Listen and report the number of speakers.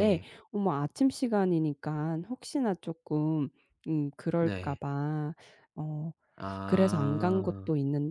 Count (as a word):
two